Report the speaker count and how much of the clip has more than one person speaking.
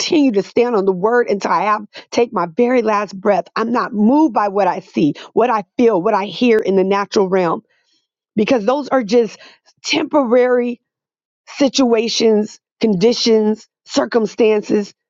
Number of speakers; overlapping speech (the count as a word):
one, no overlap